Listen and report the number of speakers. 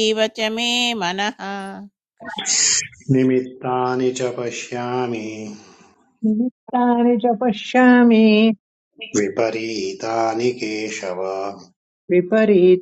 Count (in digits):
3